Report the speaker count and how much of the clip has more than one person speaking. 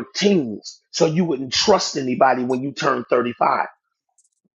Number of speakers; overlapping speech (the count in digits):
1, no overlap